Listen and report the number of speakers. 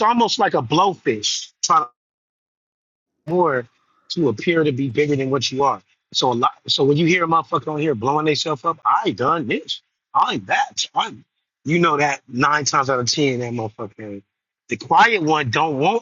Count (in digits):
1